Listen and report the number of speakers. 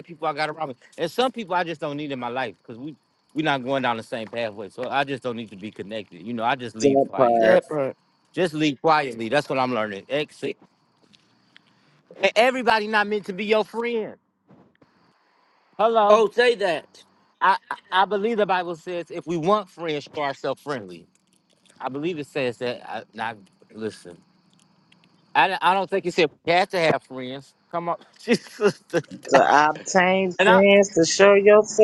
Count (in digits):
3